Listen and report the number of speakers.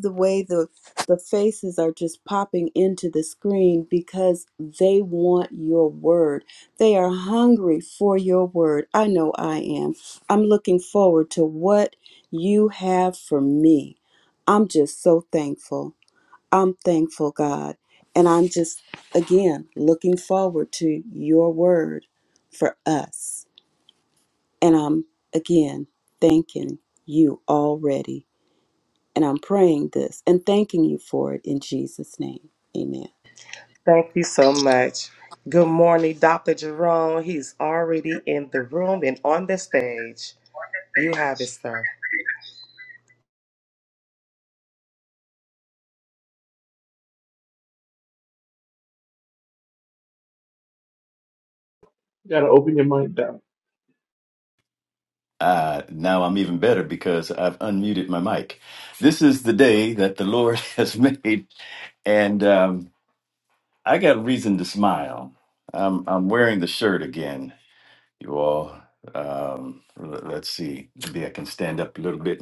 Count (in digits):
4